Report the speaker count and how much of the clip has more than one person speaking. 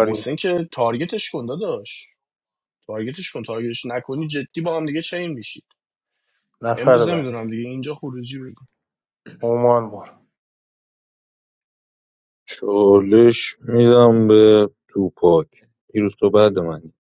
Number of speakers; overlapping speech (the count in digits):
3, about 4%